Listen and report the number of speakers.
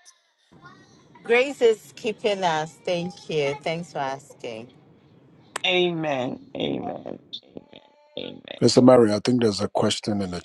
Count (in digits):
3